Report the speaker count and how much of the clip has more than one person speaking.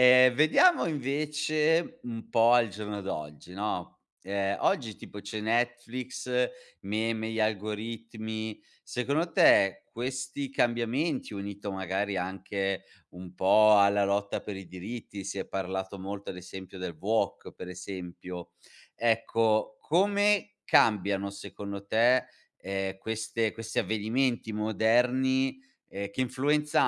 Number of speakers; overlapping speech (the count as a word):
one, no overlap